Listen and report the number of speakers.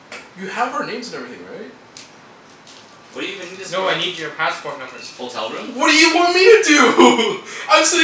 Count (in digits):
3